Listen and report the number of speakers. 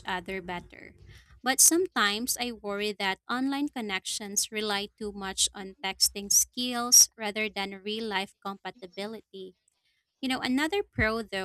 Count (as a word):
one